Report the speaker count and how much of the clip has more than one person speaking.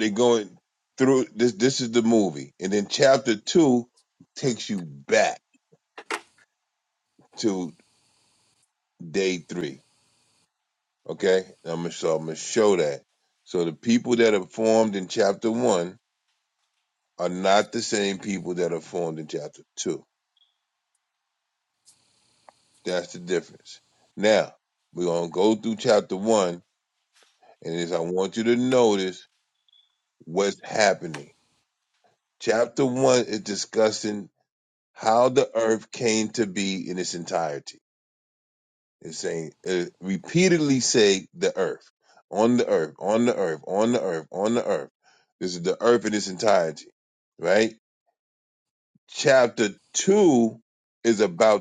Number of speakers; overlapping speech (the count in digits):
1, no overlap